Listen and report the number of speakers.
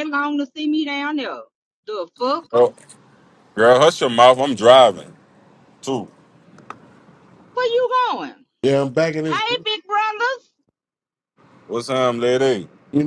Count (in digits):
3